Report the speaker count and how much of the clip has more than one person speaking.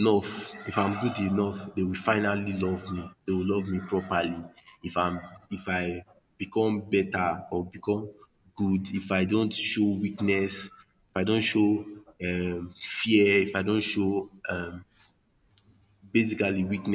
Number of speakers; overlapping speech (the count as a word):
one, no overlap